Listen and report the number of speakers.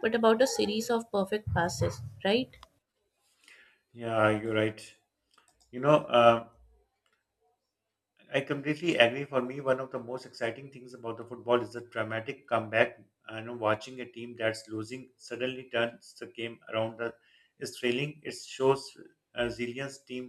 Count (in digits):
2